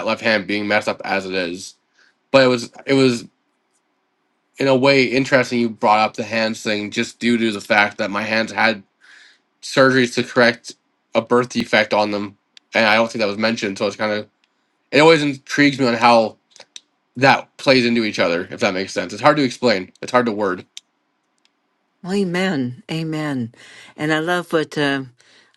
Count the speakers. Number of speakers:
2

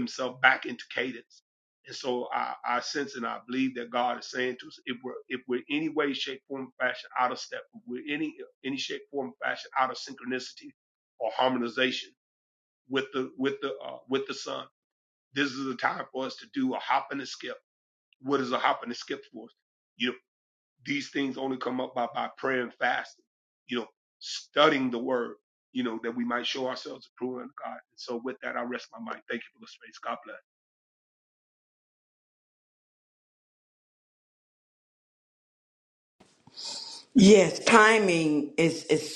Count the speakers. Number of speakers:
2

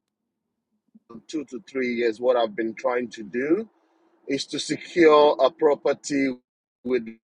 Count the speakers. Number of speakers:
1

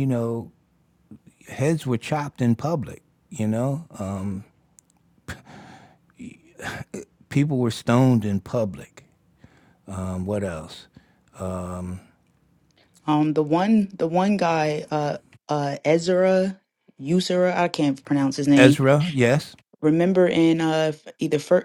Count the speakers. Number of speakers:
2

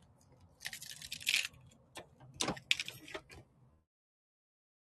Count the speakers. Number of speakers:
0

